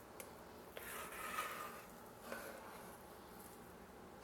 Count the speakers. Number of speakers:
0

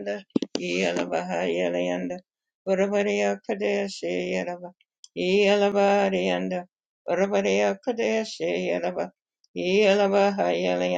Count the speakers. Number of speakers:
1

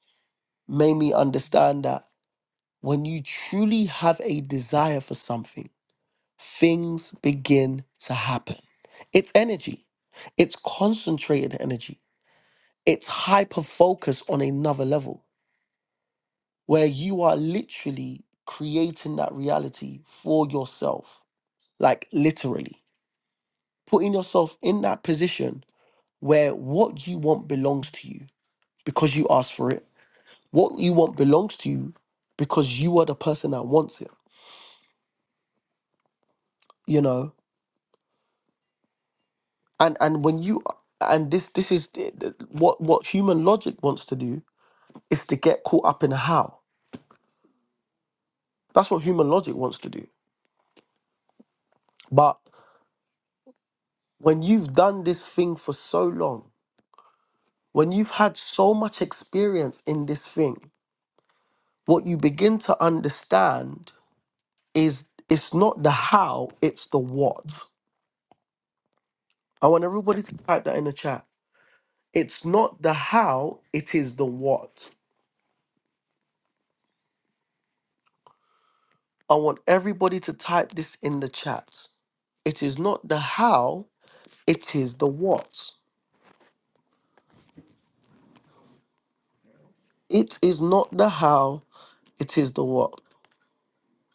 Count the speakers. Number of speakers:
1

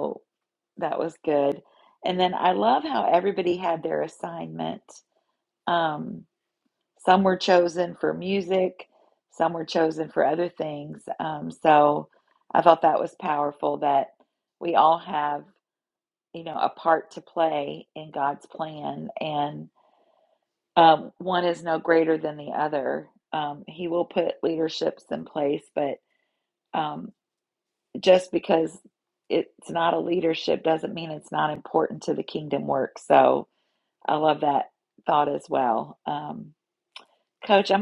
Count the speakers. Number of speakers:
1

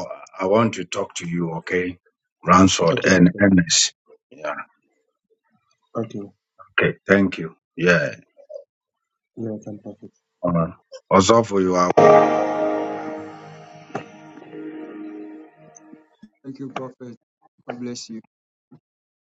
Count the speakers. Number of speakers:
3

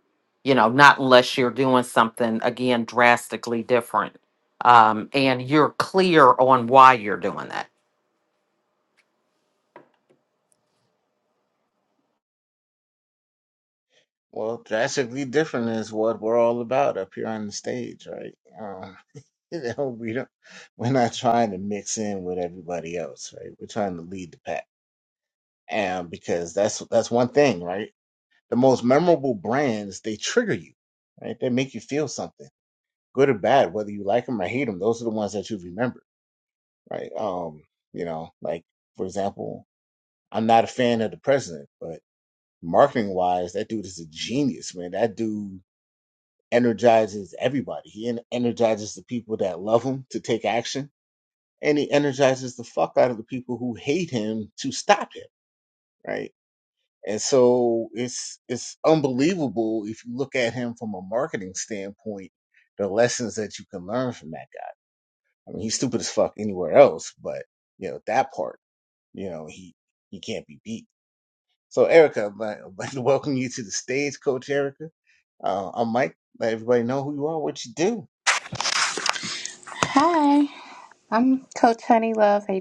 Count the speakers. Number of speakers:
3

